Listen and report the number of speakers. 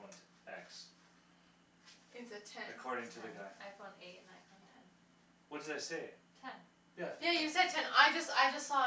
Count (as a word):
three